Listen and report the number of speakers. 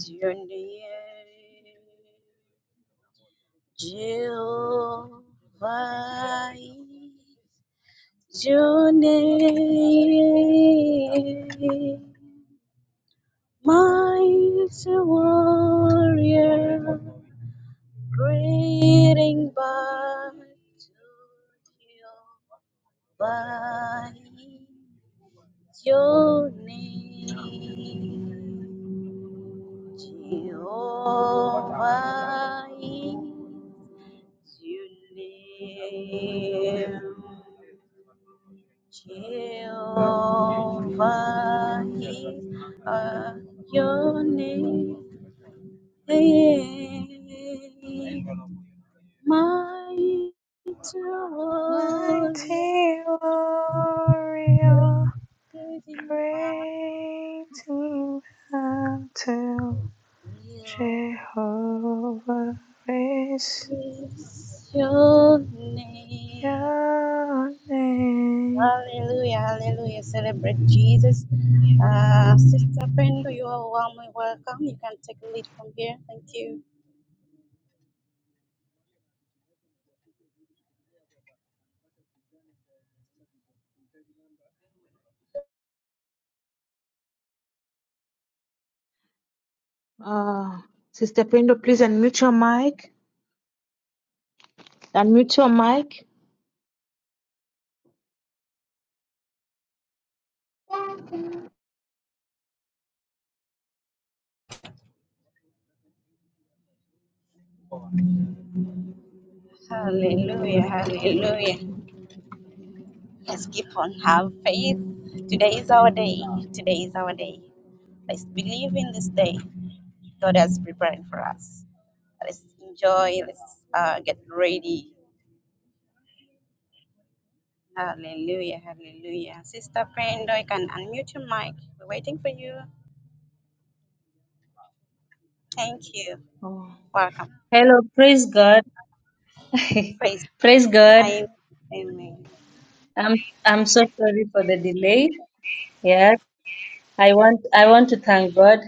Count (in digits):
4